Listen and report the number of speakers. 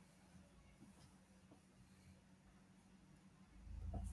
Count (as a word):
zero